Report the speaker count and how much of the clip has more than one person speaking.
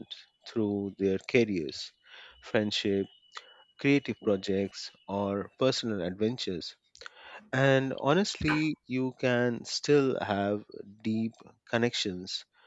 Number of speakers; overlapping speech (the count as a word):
one, no overlap